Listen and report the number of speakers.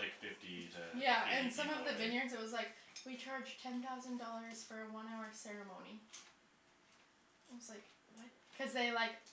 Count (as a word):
two